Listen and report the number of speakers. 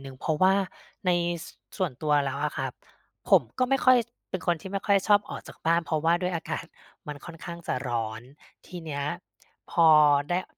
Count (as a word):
one